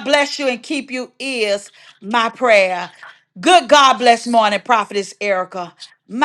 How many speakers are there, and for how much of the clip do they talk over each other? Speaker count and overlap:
one, no overlap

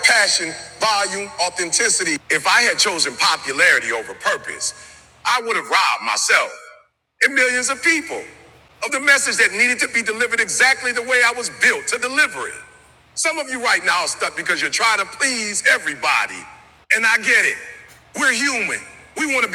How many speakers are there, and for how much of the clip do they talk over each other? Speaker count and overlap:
one, no overlap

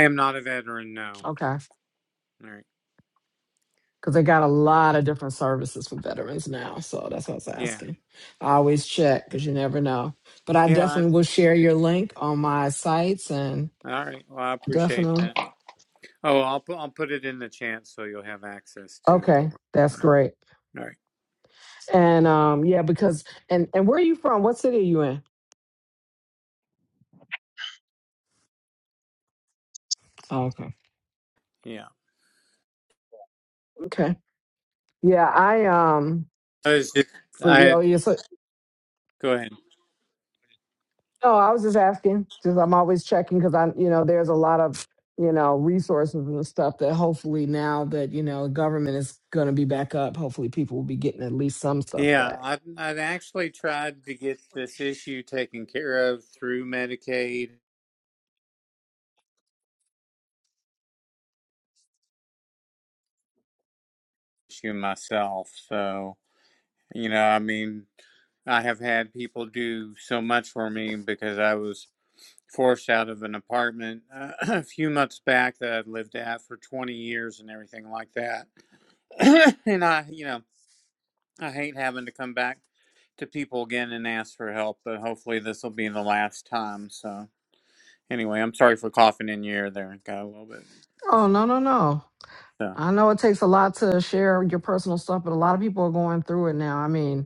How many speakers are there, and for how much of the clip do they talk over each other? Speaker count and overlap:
two, about 3%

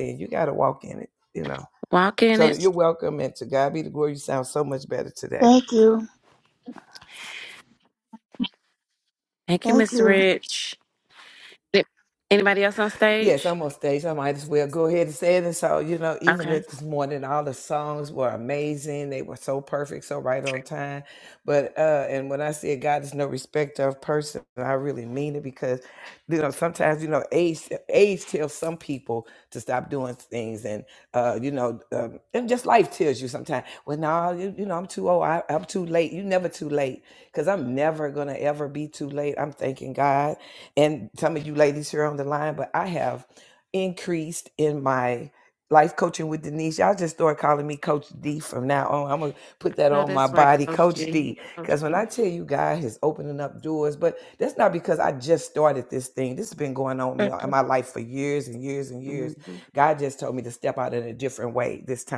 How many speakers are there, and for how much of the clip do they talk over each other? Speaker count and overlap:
three, about 6%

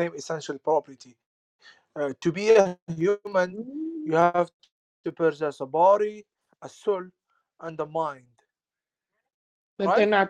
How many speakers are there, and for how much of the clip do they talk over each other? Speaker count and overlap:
two, about 3%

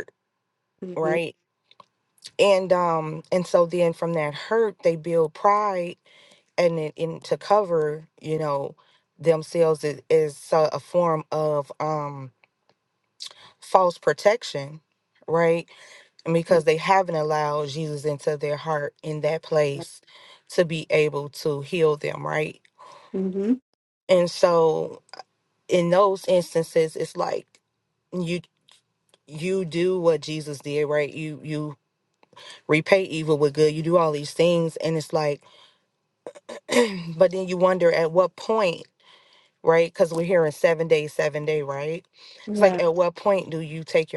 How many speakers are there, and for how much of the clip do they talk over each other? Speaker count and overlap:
two, about 1%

